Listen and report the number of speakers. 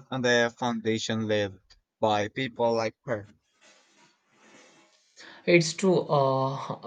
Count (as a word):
two